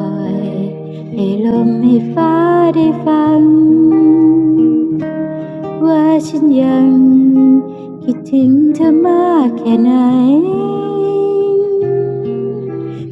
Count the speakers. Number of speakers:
1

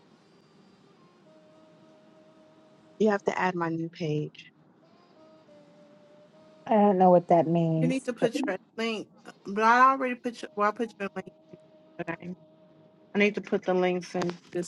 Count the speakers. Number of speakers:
3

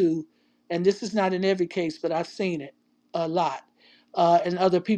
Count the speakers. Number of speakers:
1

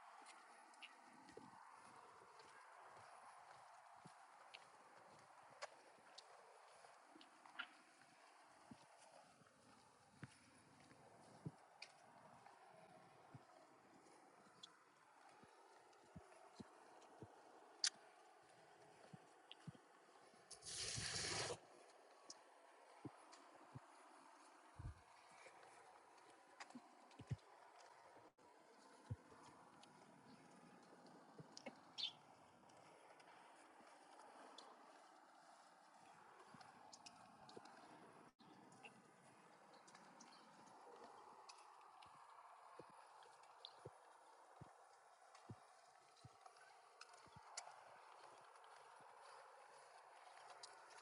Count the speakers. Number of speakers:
0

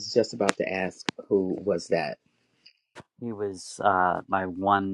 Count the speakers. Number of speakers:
2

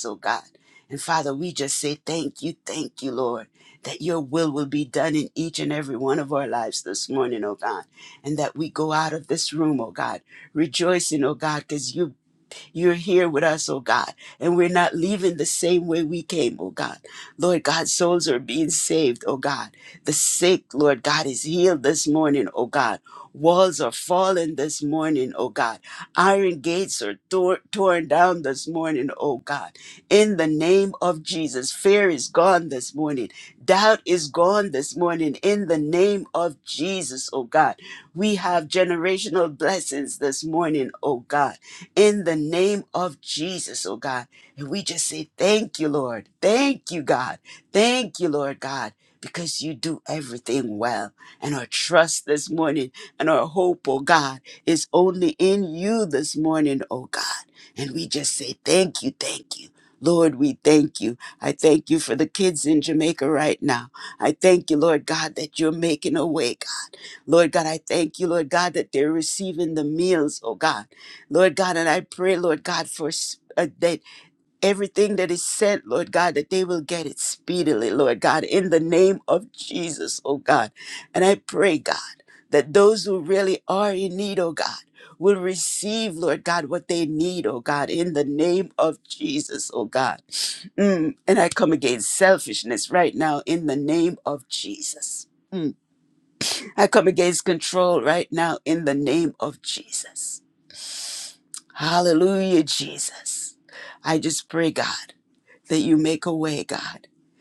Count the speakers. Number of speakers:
1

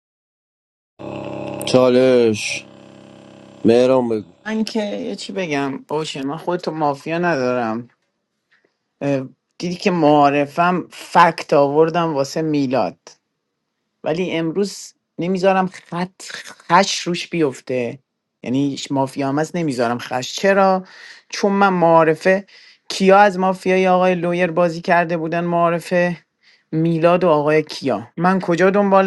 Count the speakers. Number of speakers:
2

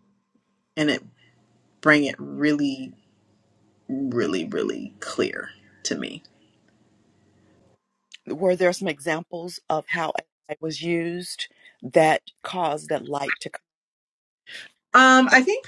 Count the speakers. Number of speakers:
2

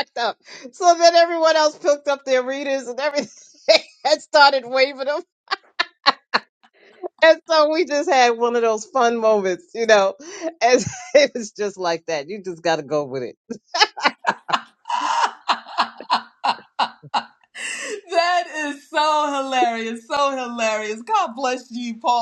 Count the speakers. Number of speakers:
2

